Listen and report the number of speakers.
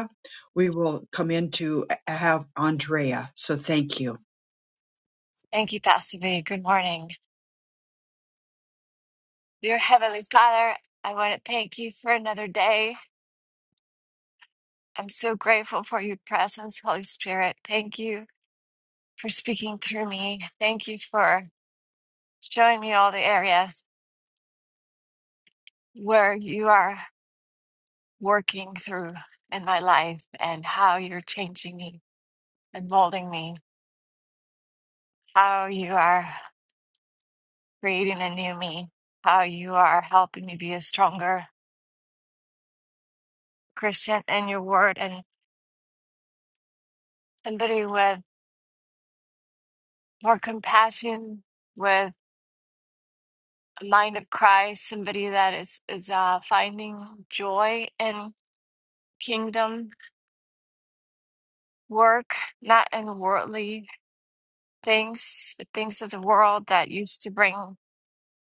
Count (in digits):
2